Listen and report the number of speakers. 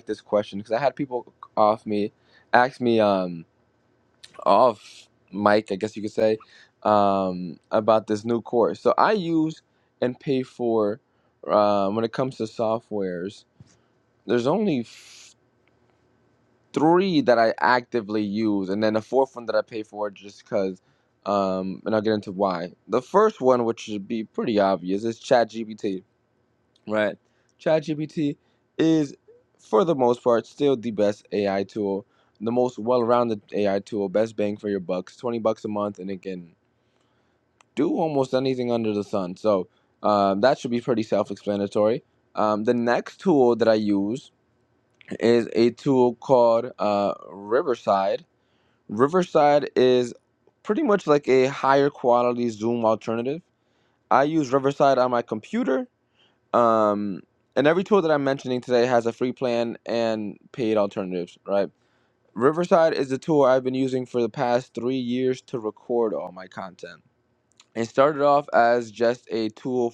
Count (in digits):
1